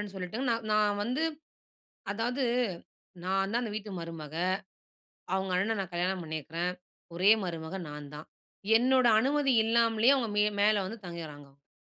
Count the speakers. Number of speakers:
1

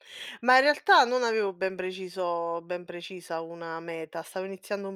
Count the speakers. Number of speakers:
1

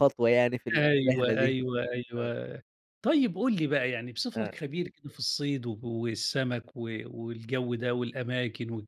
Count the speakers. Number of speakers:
2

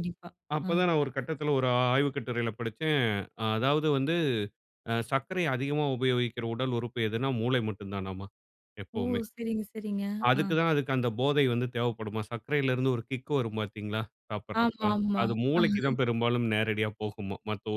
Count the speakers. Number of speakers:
2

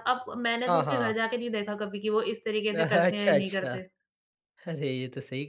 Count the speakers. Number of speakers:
2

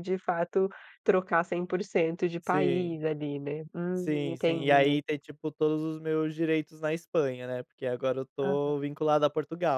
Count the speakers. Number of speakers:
2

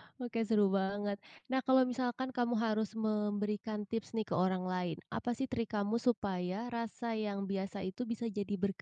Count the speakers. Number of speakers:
1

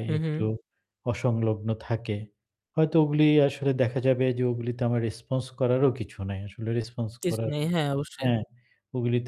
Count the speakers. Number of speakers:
2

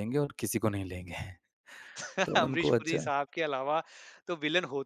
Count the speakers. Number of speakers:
2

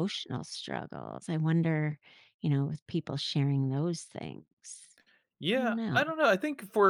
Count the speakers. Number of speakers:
2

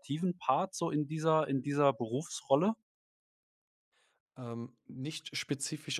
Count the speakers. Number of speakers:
2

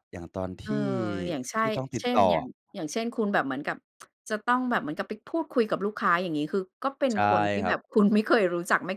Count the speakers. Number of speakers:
2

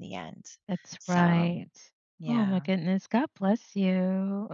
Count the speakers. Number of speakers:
2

